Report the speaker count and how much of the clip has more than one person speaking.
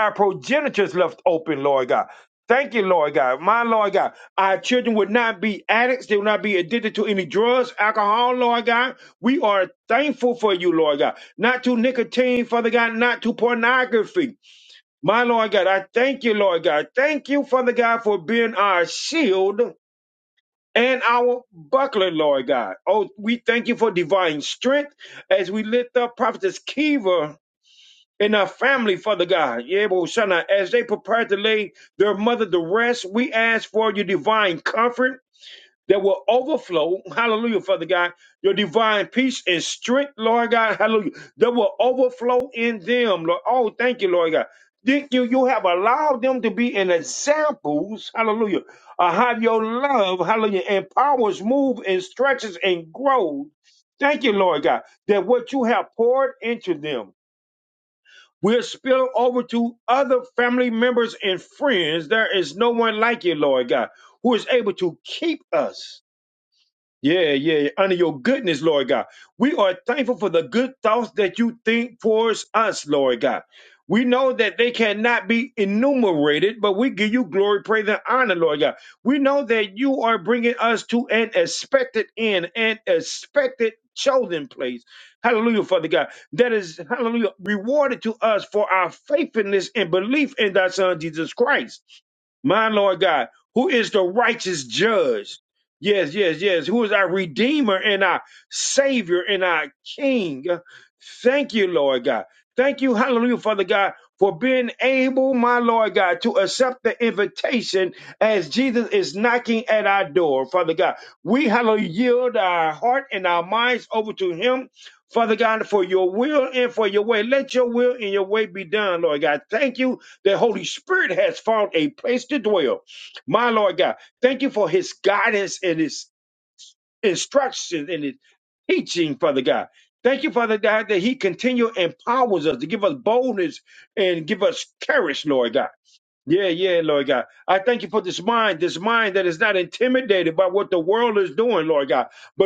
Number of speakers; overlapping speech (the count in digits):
1, no overlap